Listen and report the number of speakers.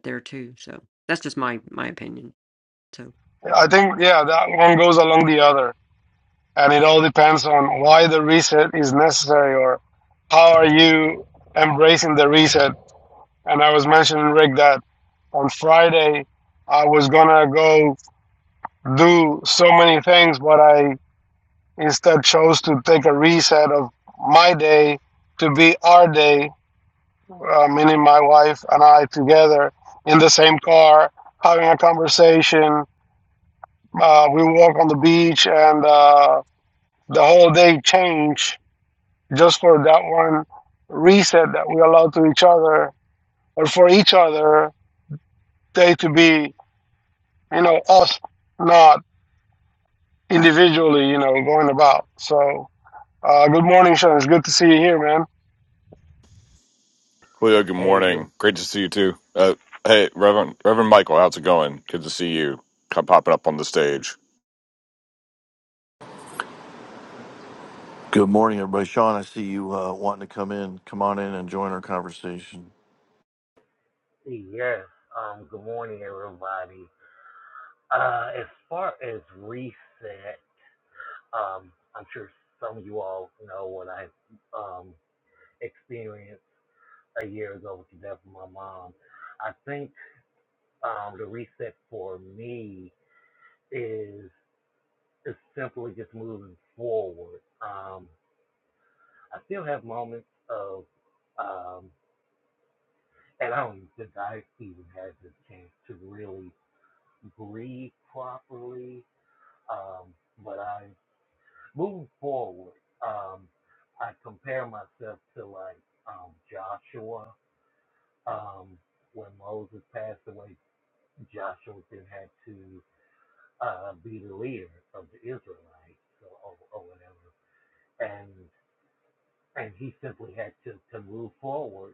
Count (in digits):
5